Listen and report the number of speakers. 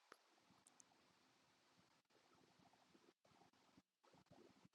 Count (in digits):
0